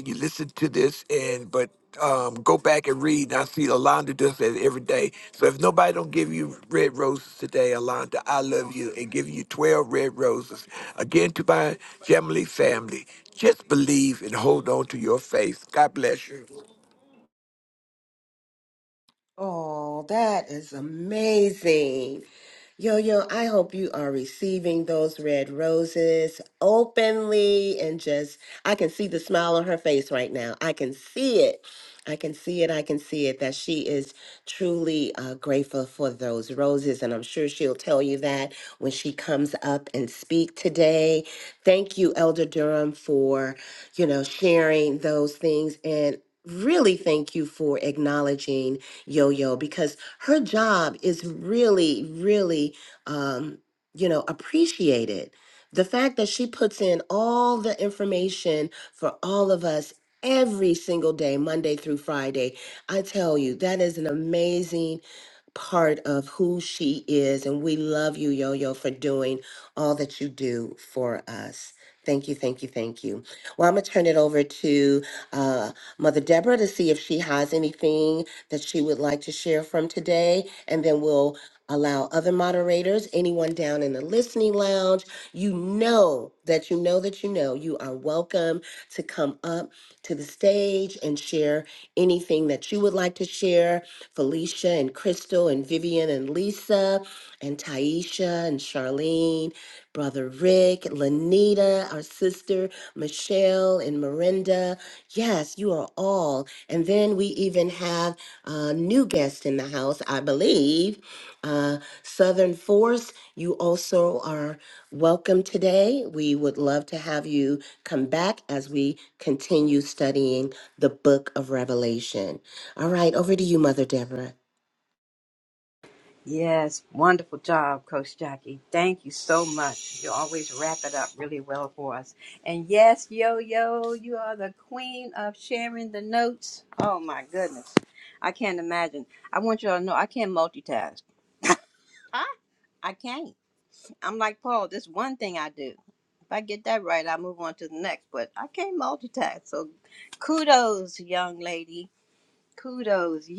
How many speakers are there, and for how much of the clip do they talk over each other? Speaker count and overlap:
3, no overlap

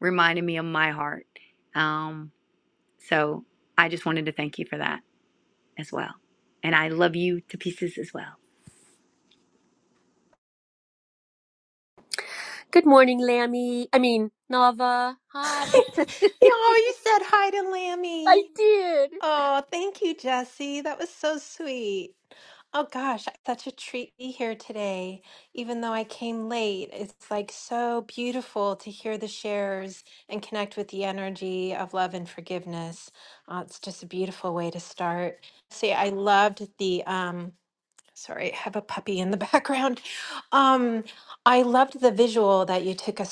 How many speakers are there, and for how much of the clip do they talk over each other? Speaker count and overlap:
3, about 1%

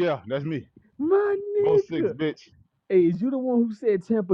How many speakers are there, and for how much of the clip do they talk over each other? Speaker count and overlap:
2, about 7%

